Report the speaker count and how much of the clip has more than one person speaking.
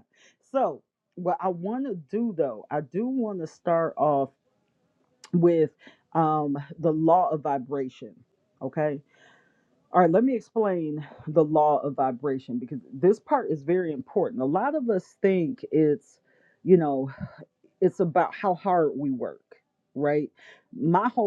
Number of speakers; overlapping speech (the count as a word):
one, no overlap